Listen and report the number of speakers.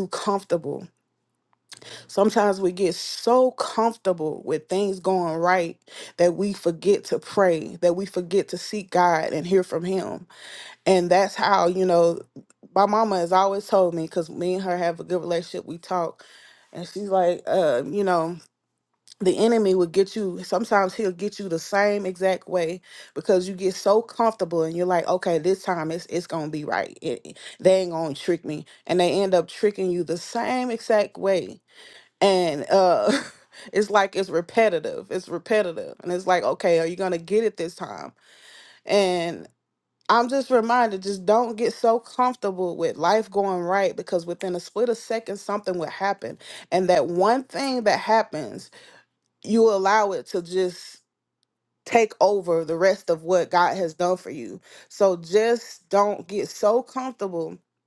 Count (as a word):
one